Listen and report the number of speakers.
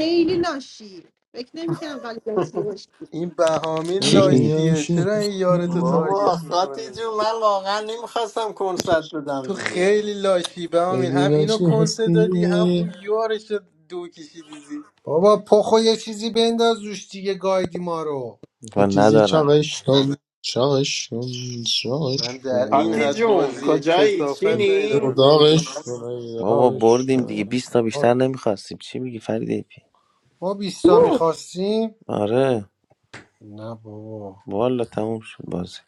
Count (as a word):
six